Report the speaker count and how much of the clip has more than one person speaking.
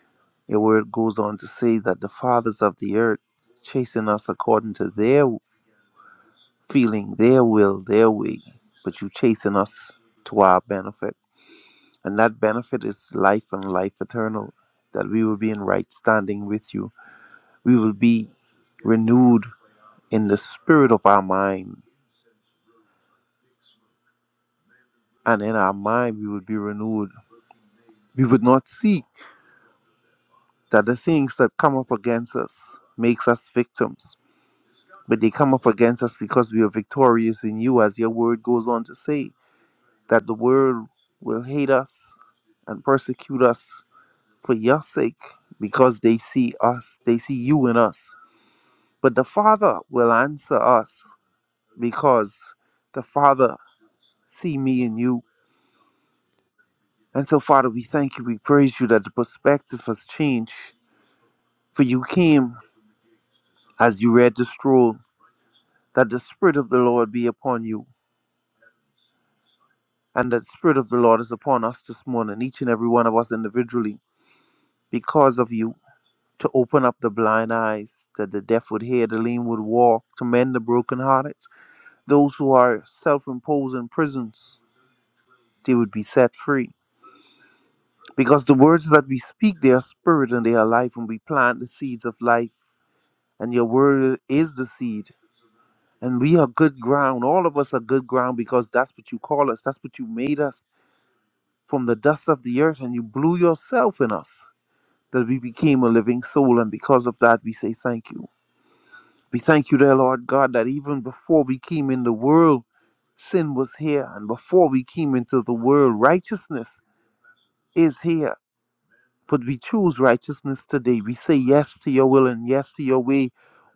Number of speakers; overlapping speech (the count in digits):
1, no overlap